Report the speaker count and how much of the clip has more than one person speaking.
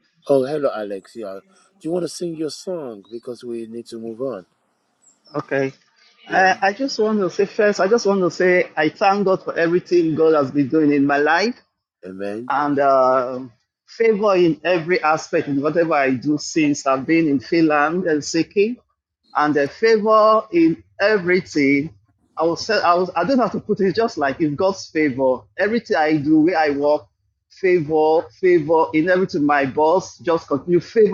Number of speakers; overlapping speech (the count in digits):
2, about 1%